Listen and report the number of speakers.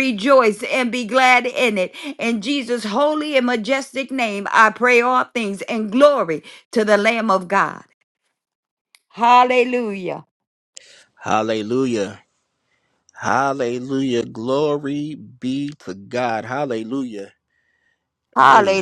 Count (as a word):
two